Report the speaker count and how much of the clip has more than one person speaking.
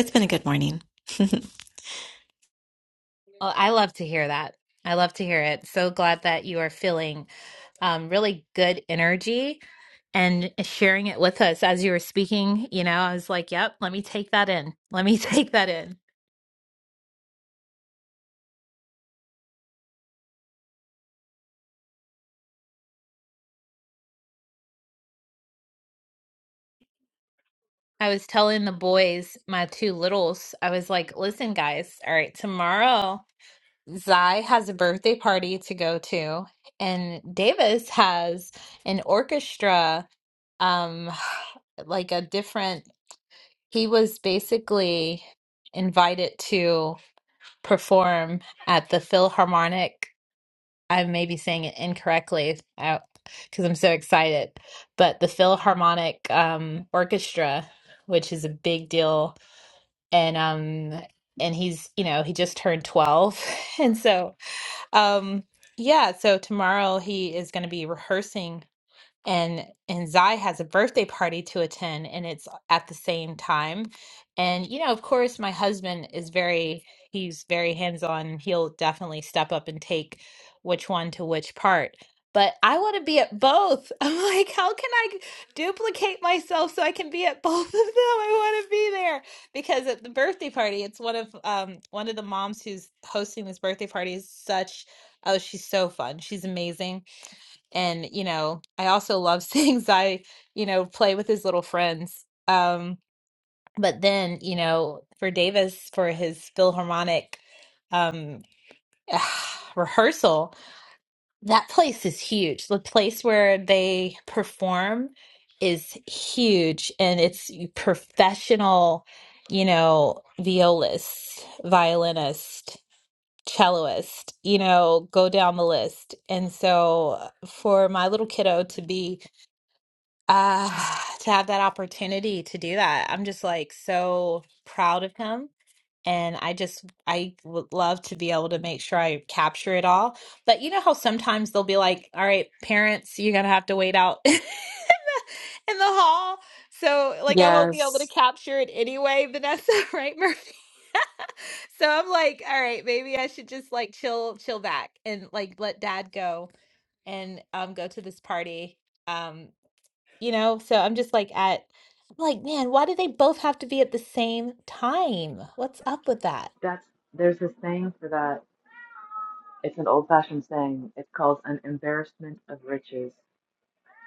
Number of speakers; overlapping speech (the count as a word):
three, under 1%